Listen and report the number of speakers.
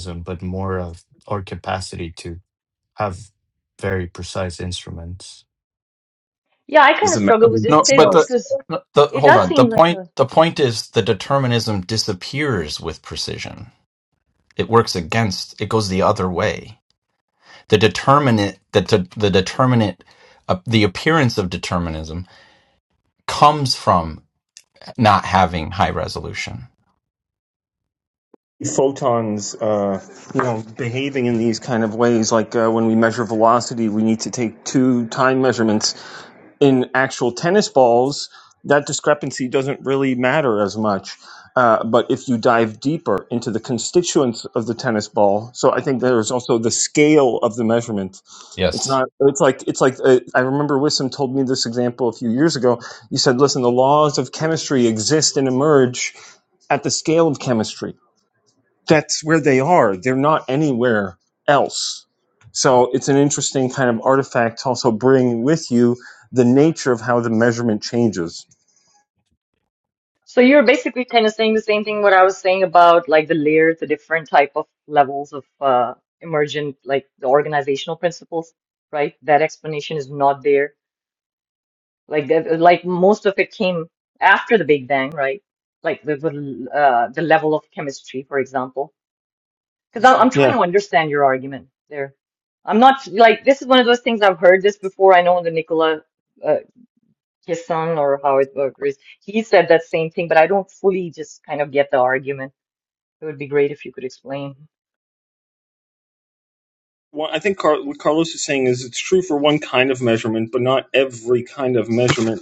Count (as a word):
four